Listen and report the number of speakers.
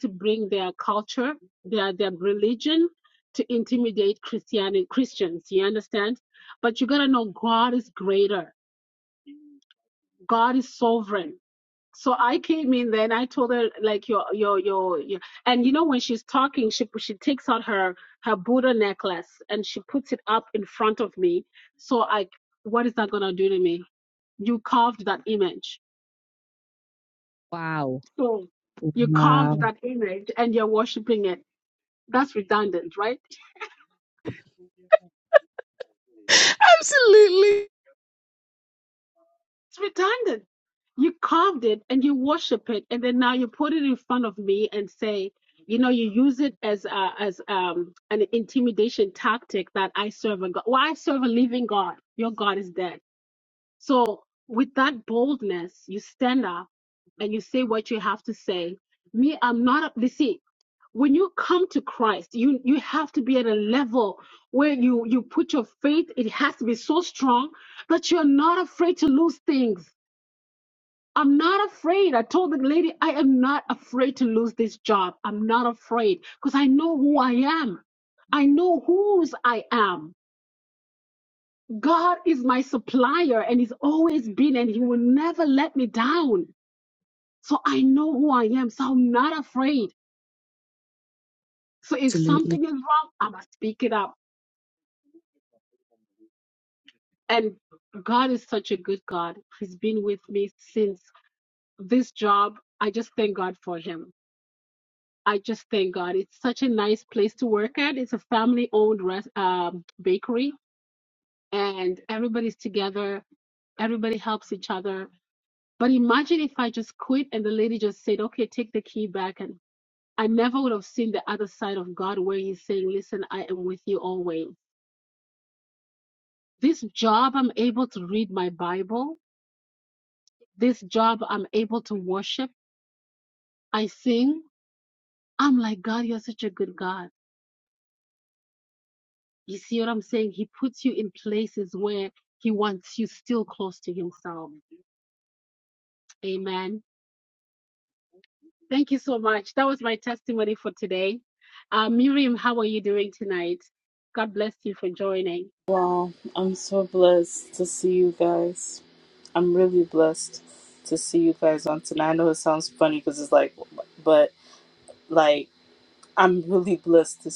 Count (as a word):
three